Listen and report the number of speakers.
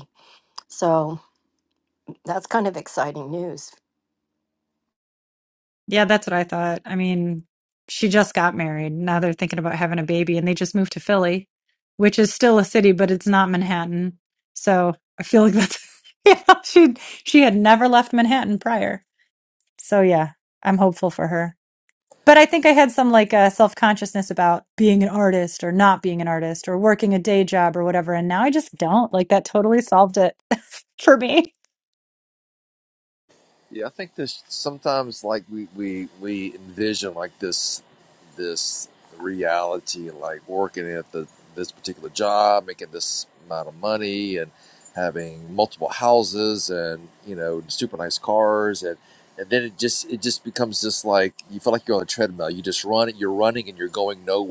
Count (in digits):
3